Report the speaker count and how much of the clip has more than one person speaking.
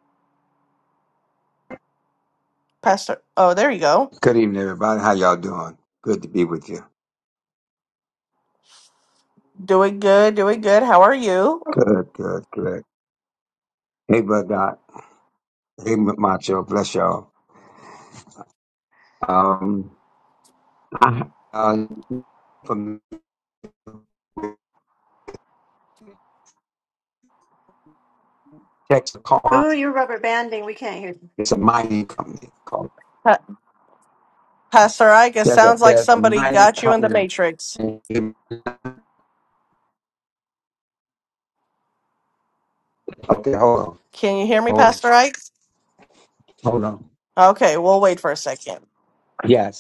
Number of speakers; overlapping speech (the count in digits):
3, about 4%